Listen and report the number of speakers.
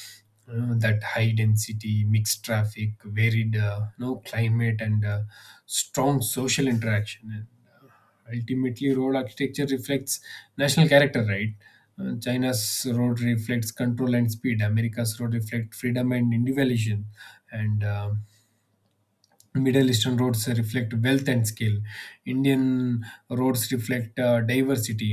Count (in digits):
1